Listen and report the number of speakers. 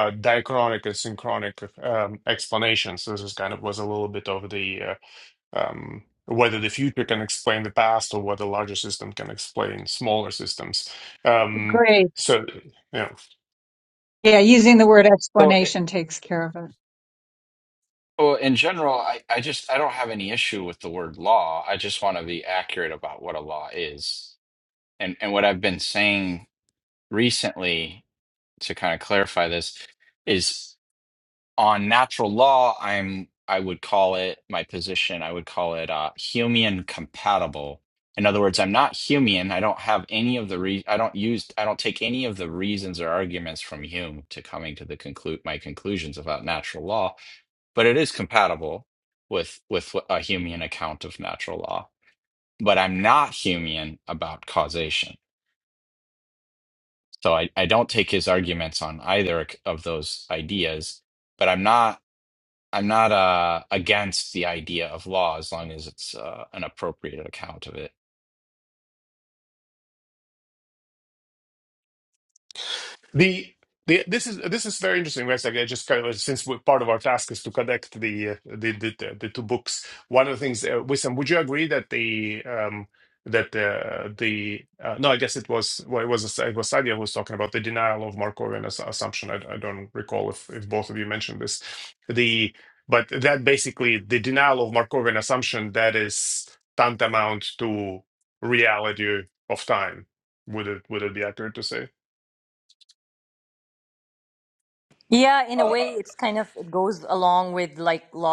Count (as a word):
four